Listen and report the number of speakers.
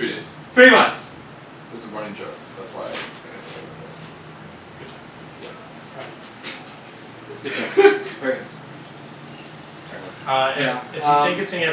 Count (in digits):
3